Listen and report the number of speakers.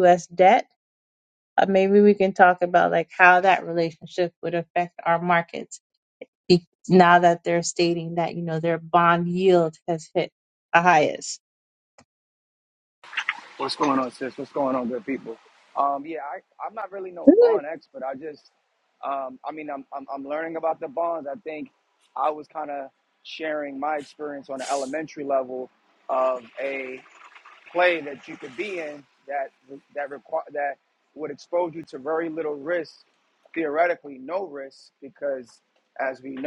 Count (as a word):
two